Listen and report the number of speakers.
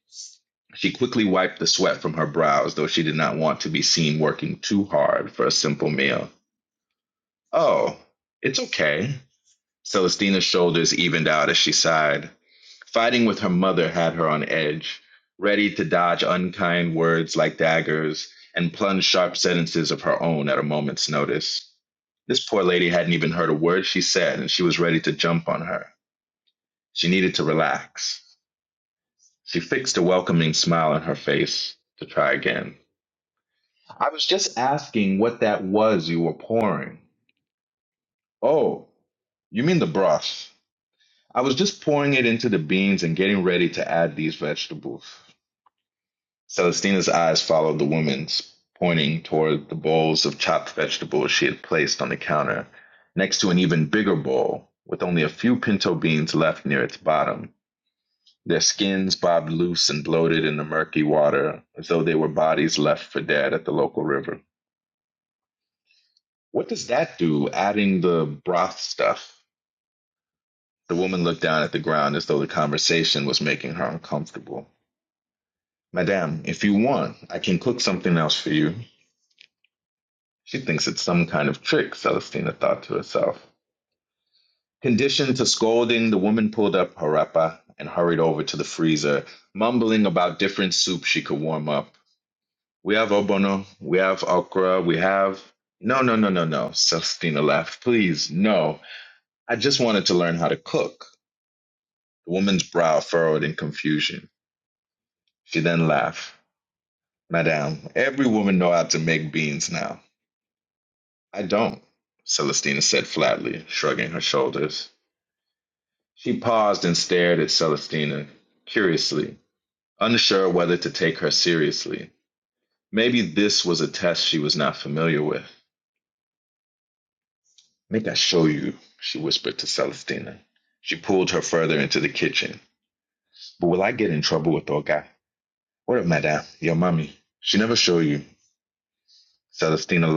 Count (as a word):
one